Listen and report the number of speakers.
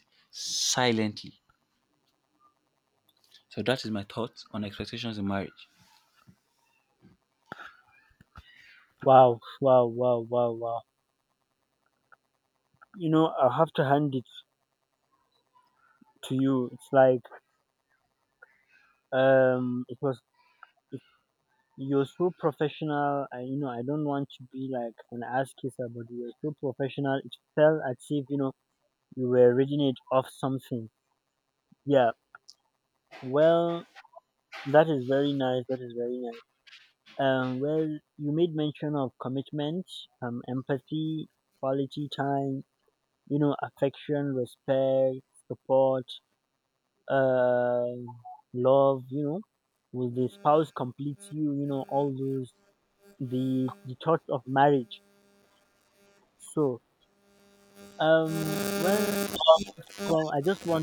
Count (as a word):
two